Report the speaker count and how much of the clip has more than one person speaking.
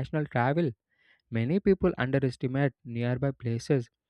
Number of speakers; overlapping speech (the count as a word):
one, no overlap